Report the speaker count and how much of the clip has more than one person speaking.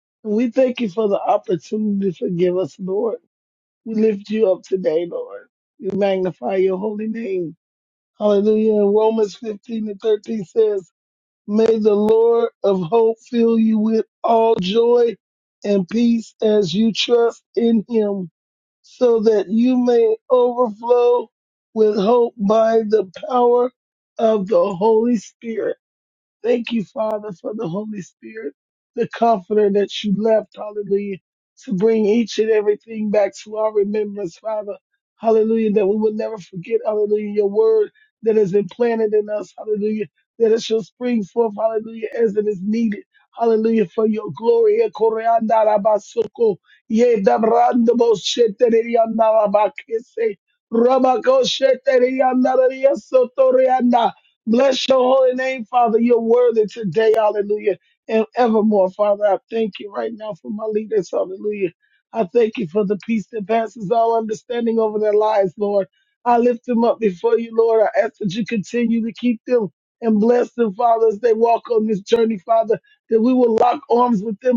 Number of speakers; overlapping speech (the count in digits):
1, no overlap